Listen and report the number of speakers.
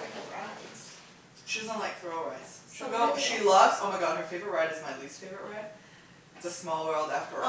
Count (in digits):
2